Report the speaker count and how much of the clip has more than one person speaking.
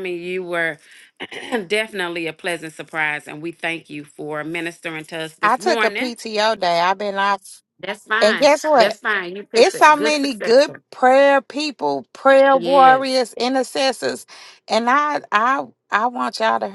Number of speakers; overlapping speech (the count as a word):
two, about 19%